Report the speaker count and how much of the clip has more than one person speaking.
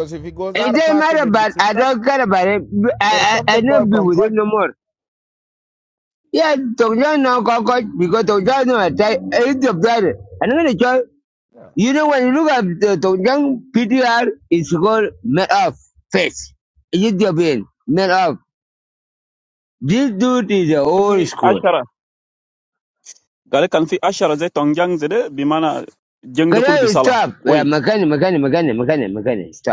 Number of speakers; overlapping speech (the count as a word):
three, about 14%